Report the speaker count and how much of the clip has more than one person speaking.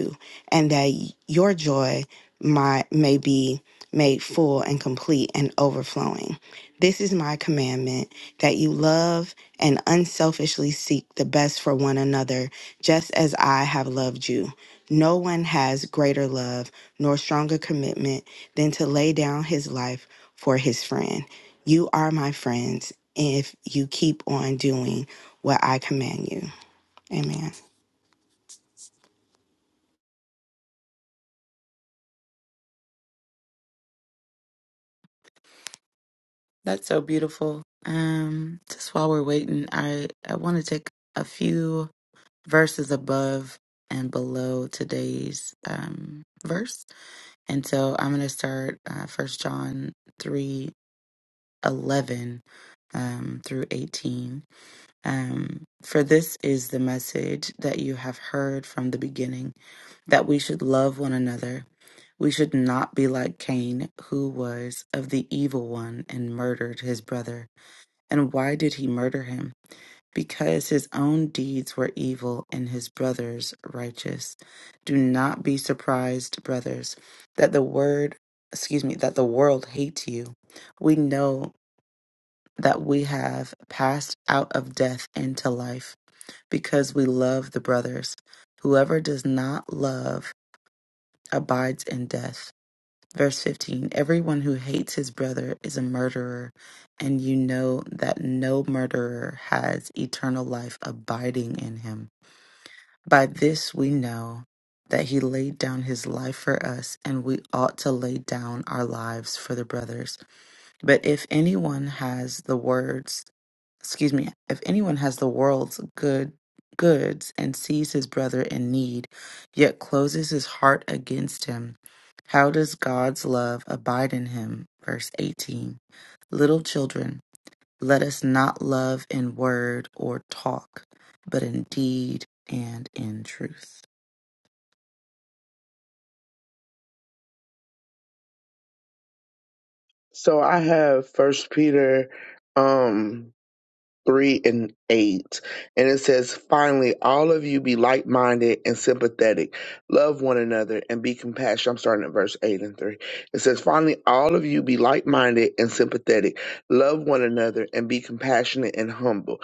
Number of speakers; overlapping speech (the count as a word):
three, no overlap